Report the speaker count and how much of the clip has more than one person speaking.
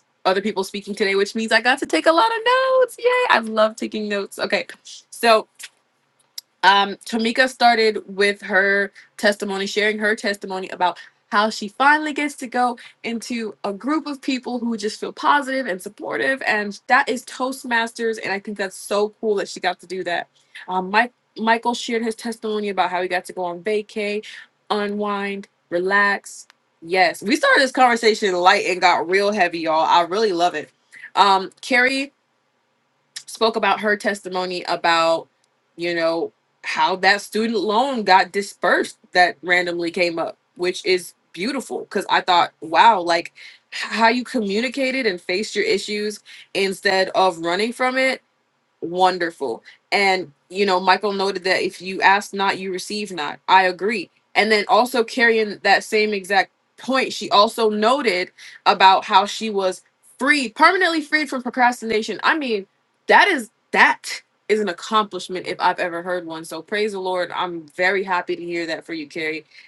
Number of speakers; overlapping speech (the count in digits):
1, no overlap